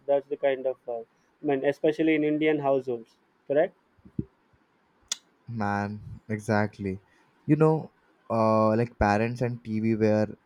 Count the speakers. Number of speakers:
two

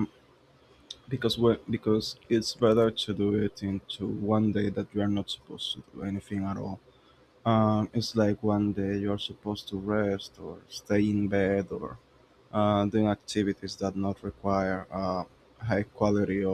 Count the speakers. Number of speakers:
one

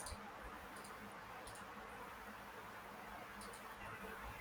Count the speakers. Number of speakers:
zero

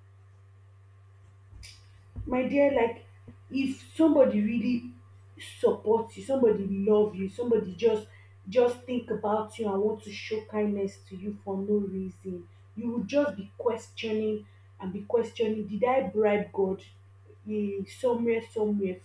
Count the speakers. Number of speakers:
one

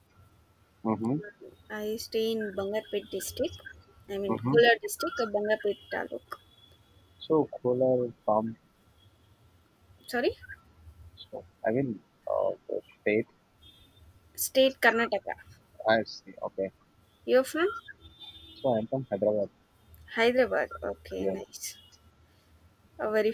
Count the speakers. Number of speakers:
two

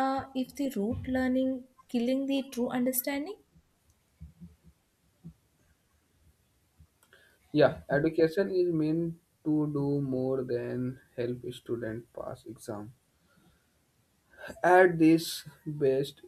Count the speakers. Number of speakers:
two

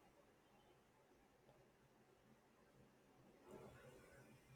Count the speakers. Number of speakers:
zero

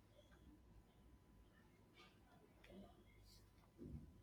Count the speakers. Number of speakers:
zero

